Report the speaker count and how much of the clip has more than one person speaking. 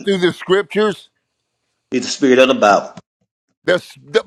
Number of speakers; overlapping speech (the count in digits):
2, about 1%